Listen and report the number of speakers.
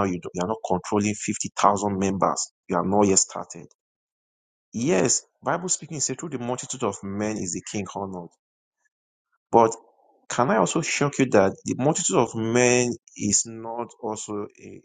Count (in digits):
1